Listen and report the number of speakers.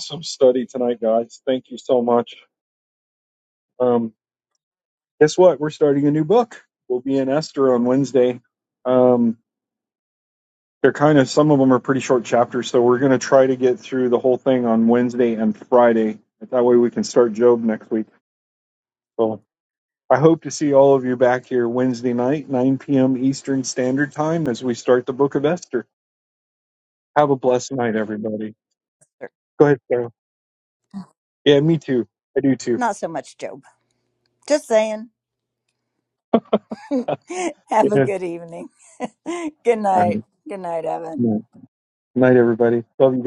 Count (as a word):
two